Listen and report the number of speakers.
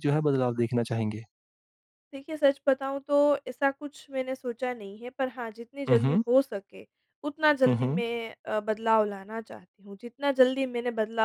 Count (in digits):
2